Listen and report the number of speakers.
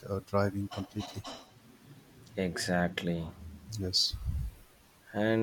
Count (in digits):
2